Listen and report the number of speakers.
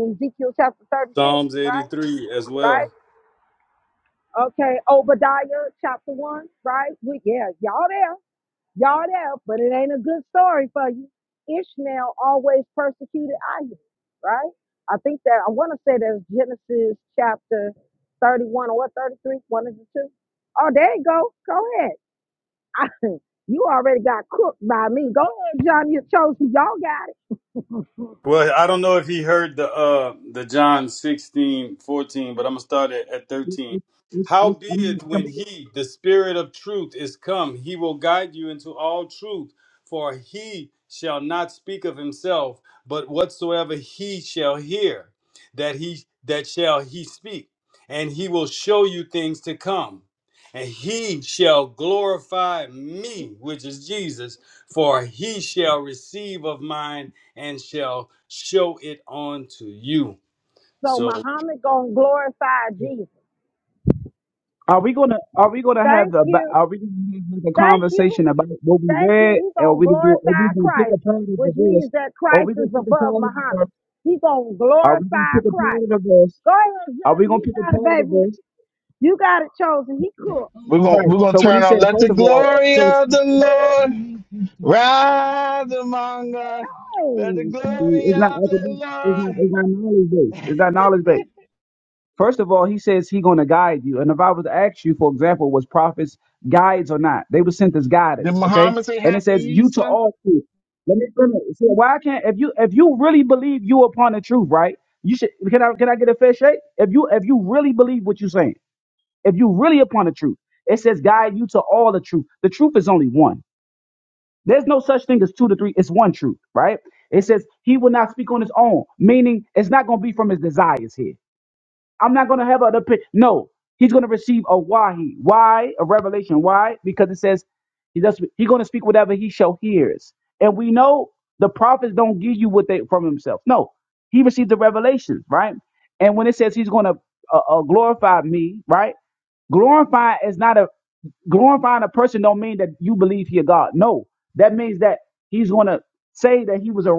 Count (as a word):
four